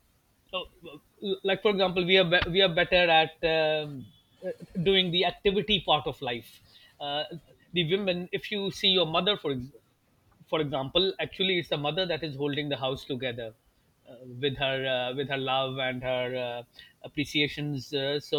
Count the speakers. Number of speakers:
1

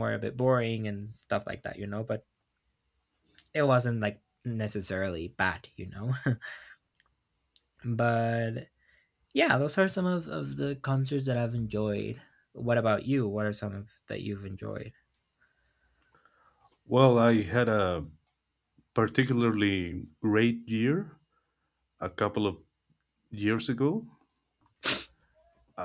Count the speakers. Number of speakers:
2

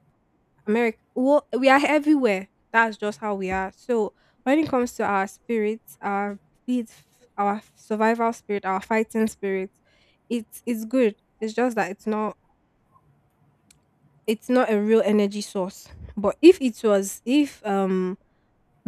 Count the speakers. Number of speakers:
1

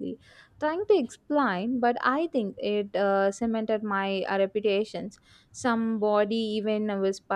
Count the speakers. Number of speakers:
1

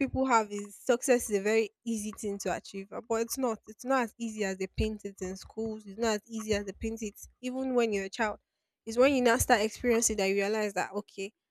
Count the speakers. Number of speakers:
1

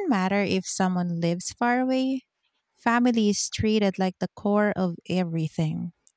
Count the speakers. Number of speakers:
1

